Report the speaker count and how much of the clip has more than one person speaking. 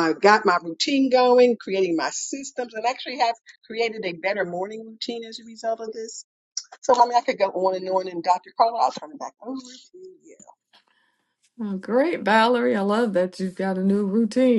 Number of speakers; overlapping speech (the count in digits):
2, no overlap